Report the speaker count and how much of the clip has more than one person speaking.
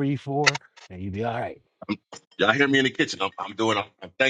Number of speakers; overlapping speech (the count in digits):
2, no overlap